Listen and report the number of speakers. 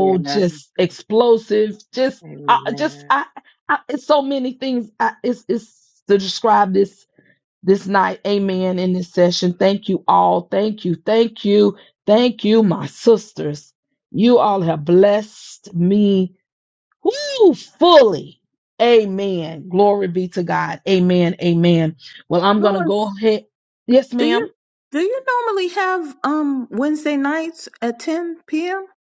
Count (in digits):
2